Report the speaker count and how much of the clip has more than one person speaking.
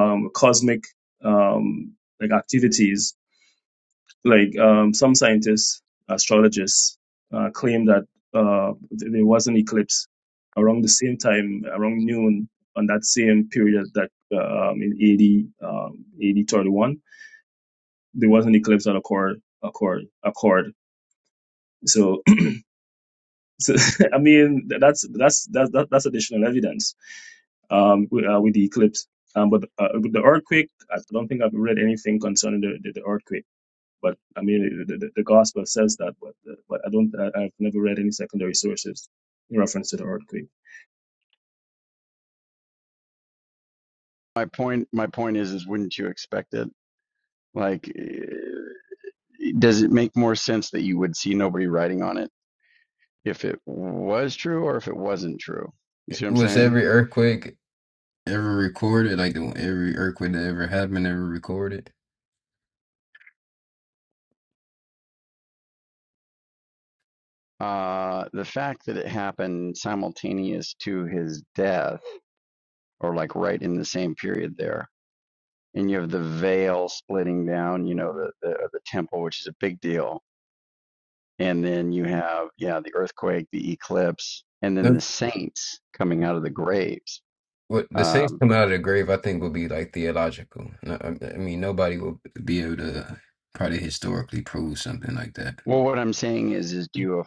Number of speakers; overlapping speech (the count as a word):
three, about 1%